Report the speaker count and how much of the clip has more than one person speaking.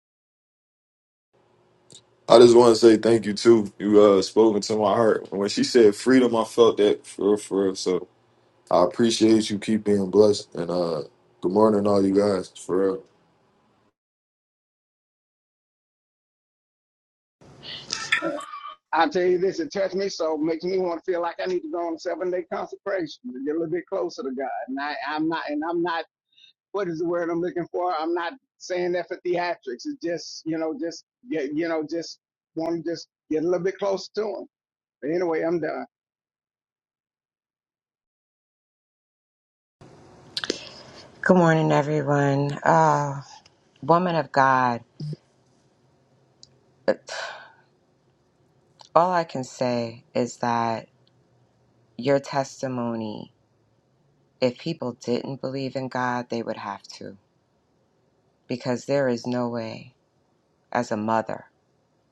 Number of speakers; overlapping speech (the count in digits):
3, no overlap